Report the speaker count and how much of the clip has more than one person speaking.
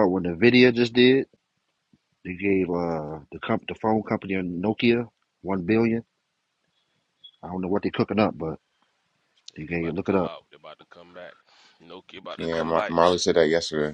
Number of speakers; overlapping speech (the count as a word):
three, about 9%